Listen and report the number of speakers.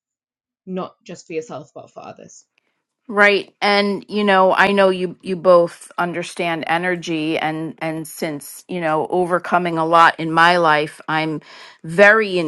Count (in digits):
2